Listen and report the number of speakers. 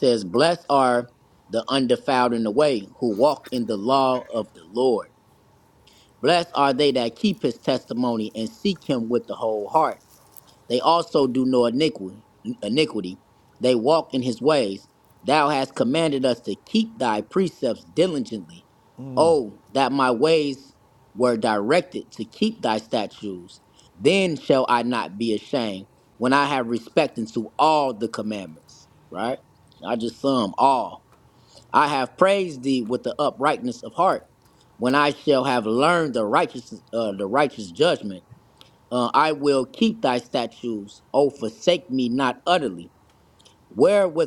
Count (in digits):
1